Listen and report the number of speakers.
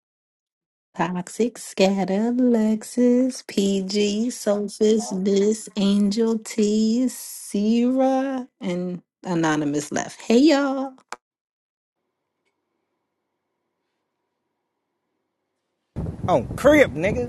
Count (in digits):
2